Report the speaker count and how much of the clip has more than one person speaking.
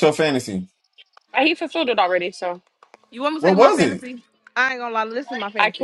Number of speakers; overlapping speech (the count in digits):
3, about 14%